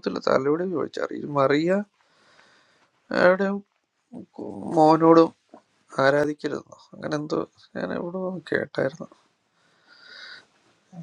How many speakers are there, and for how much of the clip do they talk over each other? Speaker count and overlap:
1, no overlap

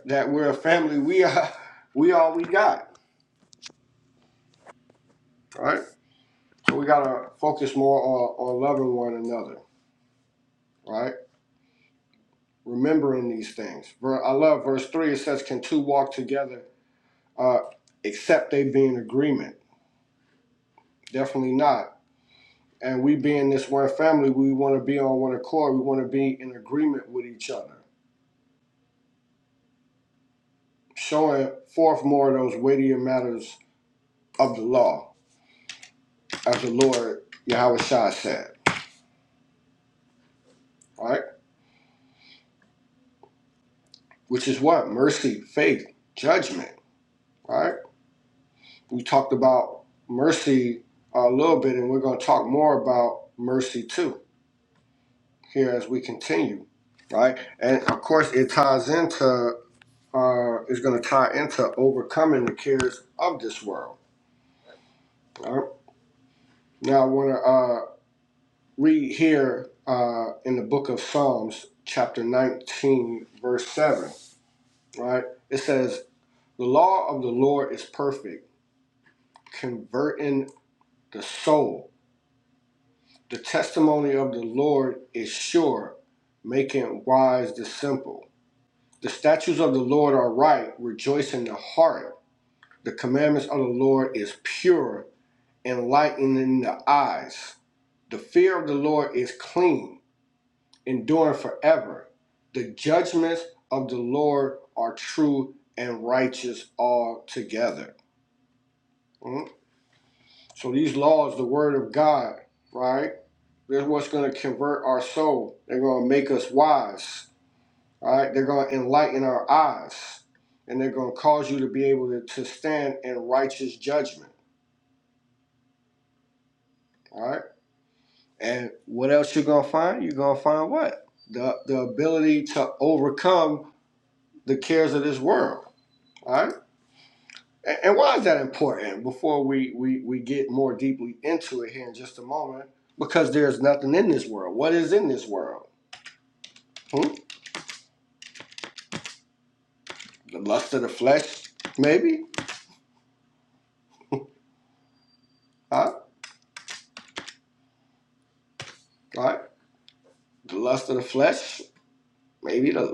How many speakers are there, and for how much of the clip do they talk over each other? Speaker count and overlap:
1, no overlap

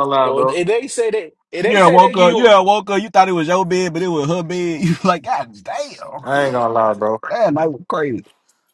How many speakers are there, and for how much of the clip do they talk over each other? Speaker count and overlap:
3, about 14%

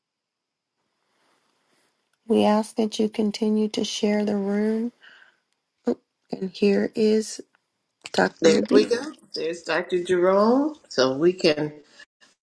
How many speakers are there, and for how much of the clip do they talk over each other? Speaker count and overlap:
2, about 4%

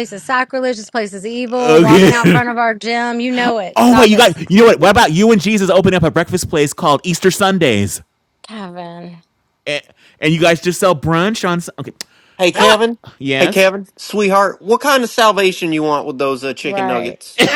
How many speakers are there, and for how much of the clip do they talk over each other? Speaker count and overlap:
3, about 12%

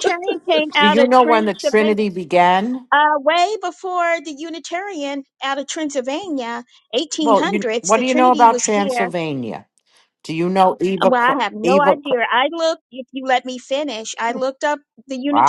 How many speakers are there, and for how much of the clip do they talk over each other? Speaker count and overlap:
2, about 28%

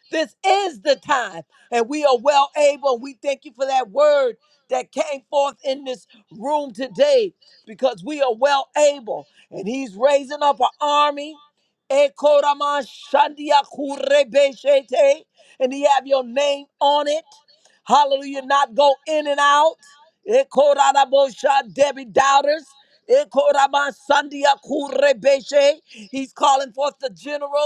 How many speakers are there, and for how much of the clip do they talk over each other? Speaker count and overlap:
1, no overlap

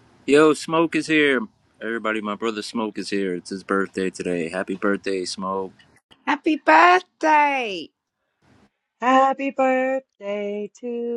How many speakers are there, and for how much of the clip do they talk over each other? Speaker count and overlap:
3, no overlap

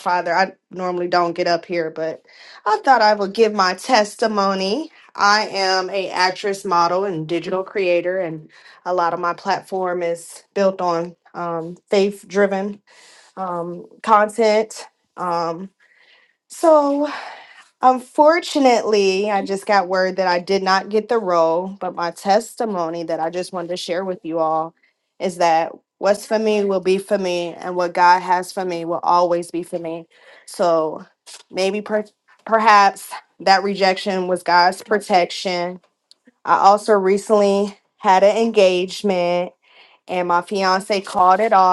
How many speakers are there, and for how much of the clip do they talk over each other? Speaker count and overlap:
1, no overlap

